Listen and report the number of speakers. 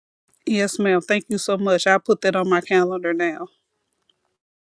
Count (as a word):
one